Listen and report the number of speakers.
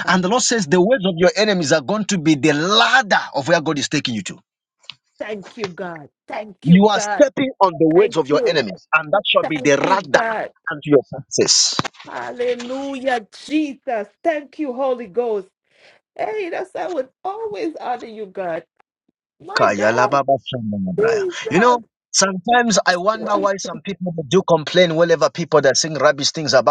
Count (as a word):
two